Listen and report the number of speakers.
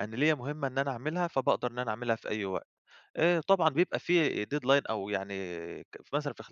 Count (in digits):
1